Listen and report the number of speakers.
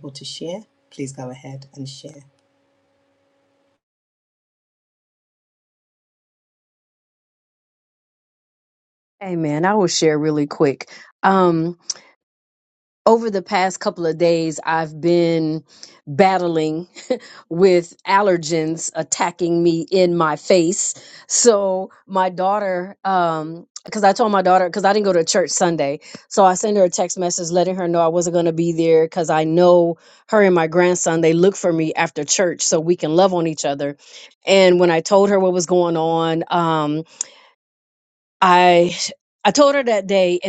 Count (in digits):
2